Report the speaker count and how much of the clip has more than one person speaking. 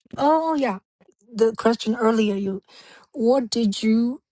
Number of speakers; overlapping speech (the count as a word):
one, no overlap